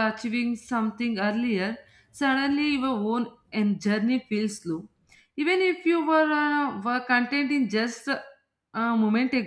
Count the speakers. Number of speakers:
one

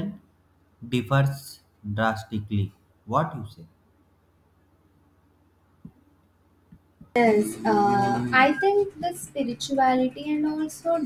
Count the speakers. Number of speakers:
two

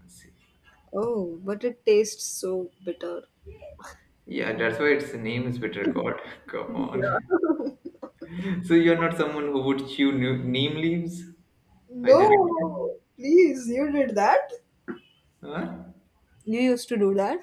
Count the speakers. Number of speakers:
two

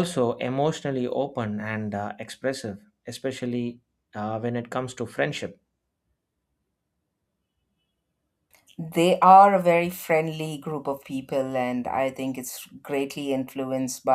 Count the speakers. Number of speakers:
two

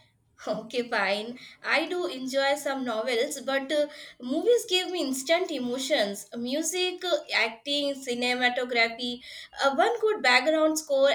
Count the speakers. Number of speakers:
one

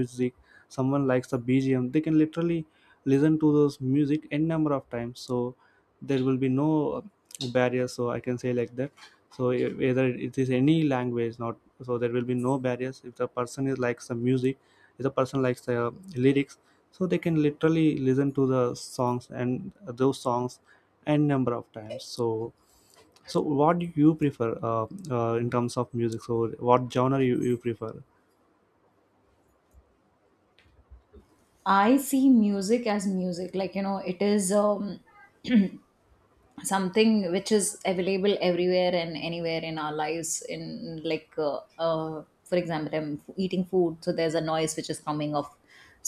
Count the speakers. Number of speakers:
two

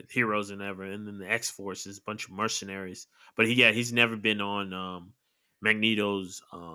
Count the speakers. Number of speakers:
one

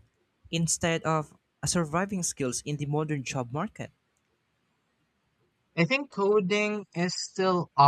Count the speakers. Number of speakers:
two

